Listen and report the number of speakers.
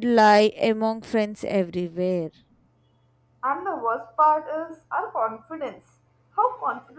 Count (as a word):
two